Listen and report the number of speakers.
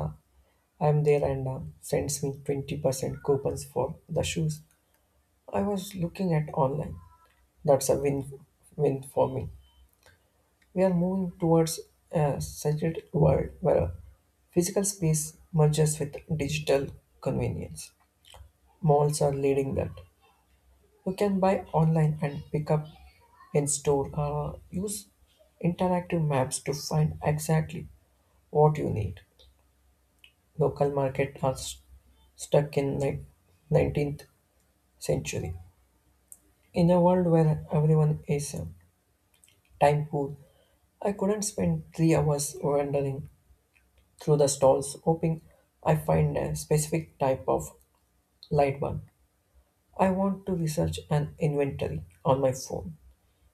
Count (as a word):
one